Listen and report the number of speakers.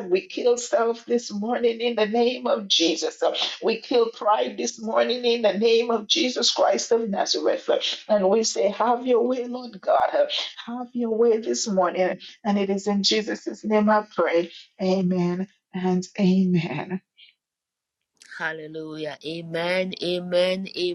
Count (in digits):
2